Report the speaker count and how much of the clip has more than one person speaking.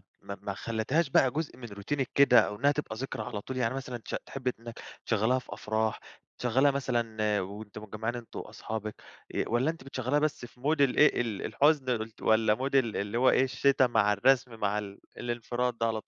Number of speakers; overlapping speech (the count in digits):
1, no overlap